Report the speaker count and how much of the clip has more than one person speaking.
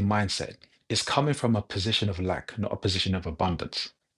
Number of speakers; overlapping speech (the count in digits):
1, no overlap